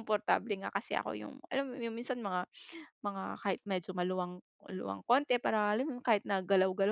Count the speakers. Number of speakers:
one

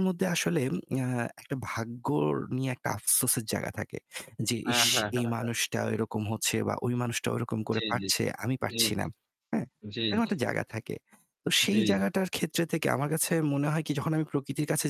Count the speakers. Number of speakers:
two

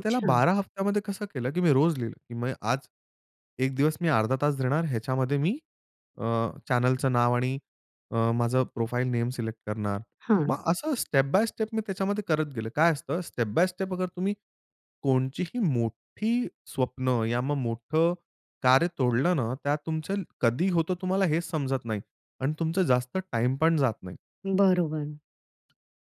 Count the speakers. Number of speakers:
two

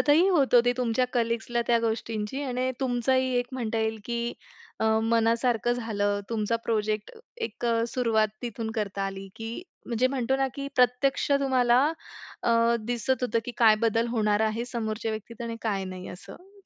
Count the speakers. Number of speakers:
one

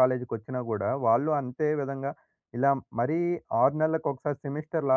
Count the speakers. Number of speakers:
one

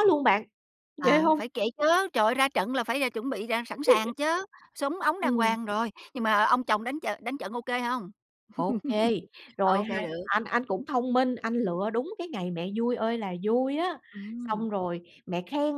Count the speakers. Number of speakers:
two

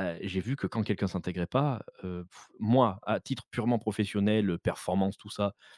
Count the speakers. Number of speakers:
one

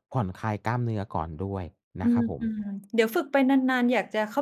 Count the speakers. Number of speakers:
two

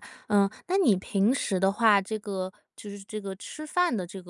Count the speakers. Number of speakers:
one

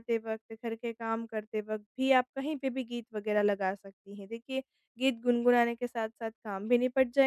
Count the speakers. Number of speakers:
one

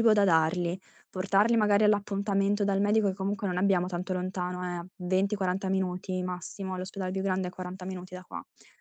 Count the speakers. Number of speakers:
one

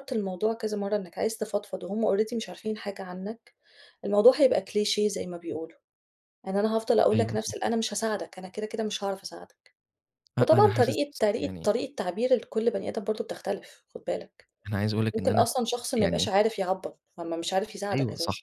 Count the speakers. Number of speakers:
two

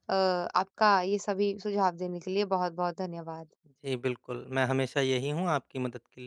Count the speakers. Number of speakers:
two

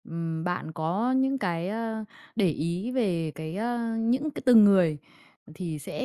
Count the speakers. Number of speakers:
one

